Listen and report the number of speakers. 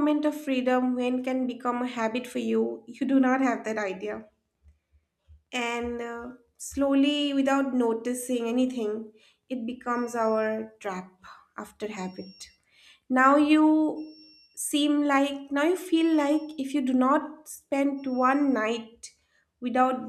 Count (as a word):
one